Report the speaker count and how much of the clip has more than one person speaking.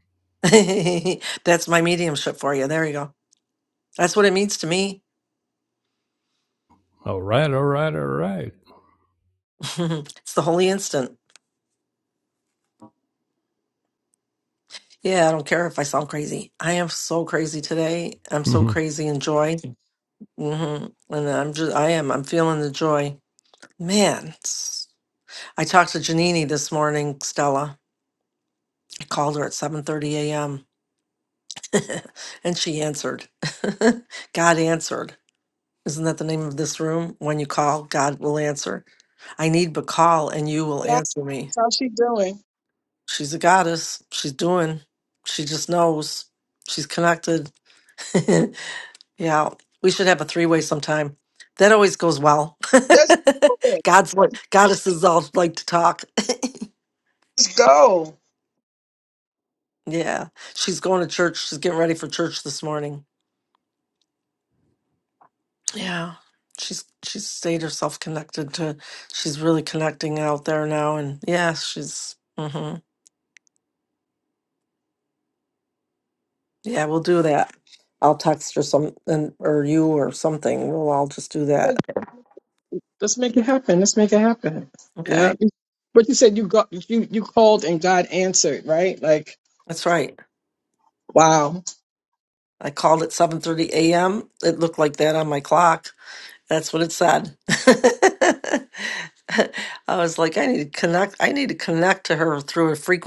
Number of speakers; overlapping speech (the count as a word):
three, about 1%